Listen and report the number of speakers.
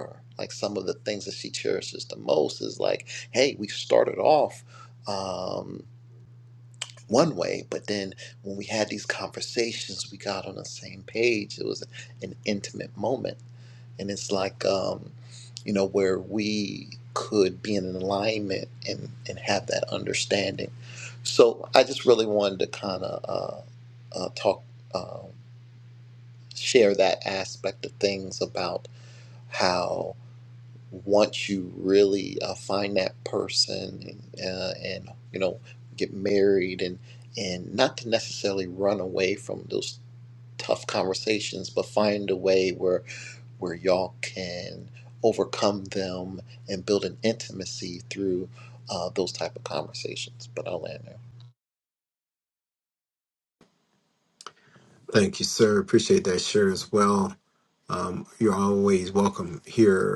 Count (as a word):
two